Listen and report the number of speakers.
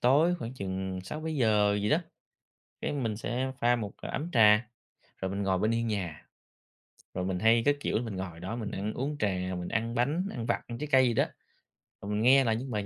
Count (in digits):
1